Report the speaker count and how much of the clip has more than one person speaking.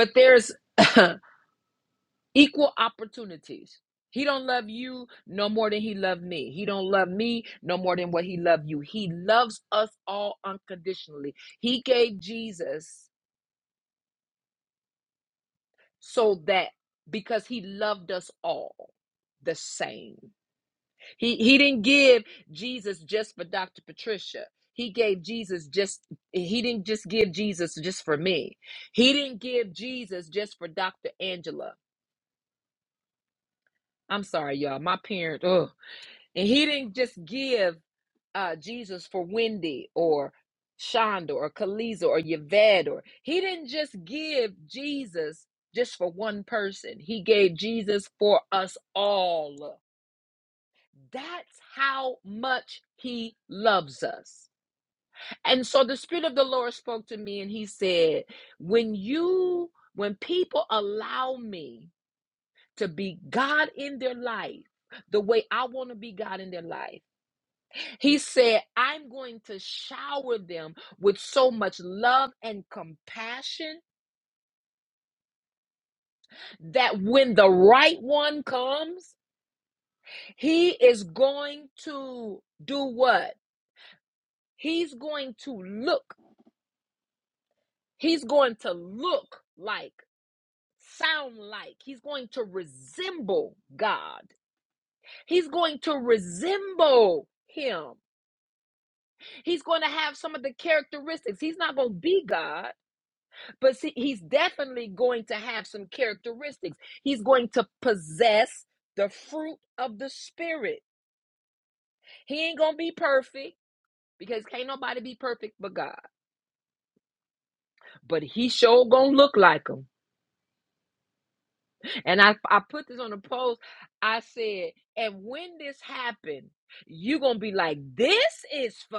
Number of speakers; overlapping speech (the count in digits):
1, no overlap